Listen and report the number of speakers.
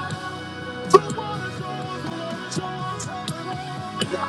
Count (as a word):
zero